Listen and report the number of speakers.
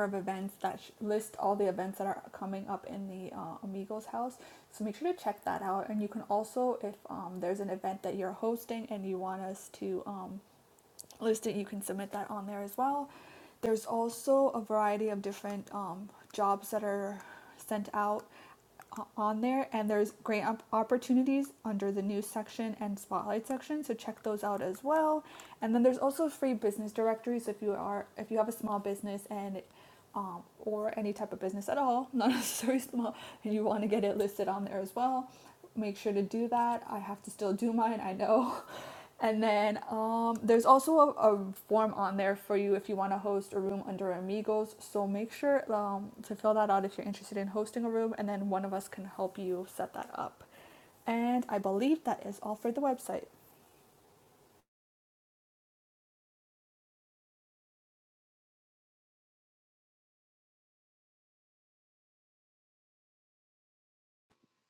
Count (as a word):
one